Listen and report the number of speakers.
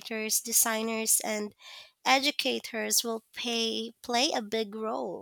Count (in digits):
1